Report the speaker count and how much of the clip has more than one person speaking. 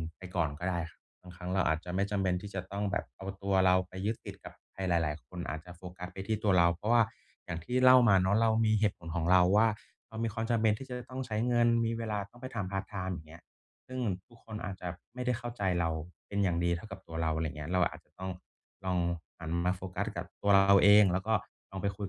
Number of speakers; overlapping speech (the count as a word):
one, no overlap